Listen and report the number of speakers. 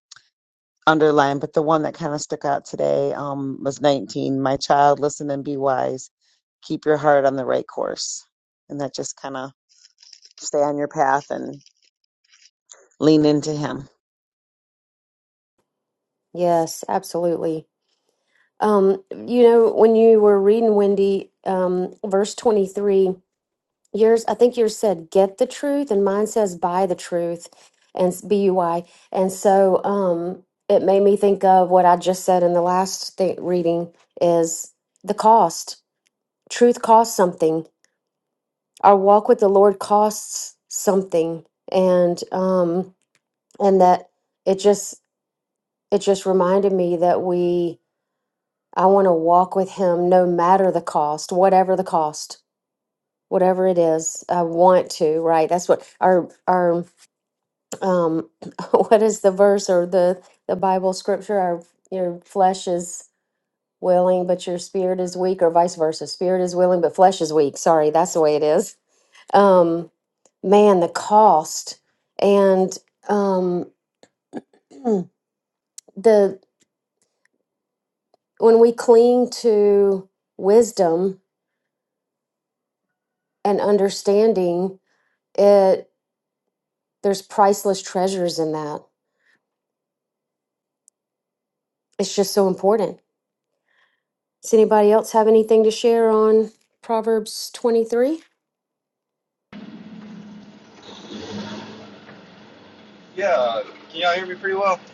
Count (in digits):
3